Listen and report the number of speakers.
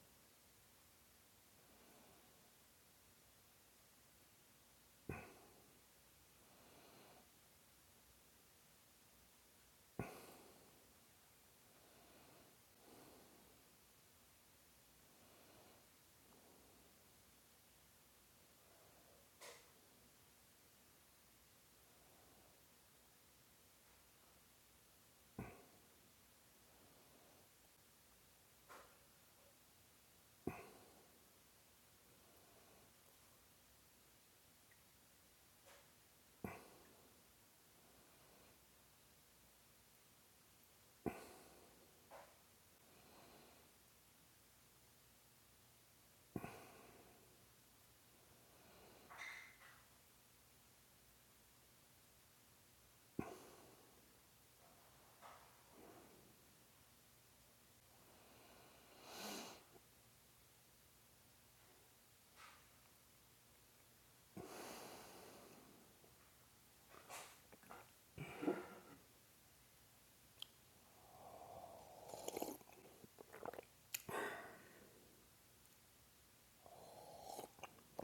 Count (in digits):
0